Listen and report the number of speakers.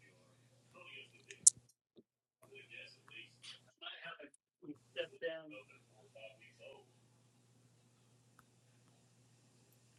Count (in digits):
0